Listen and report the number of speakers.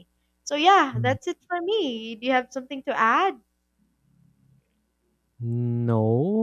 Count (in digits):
2